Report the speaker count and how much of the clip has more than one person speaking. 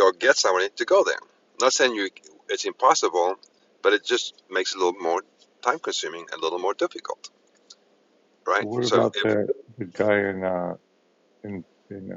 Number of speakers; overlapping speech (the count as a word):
two, about 5%